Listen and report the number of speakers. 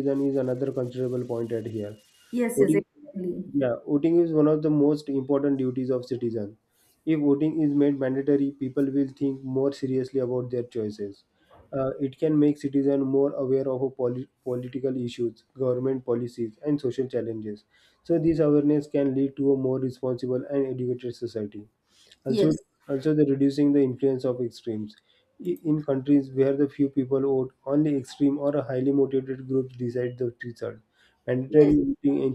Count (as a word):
two